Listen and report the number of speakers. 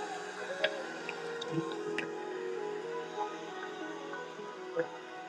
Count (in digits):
0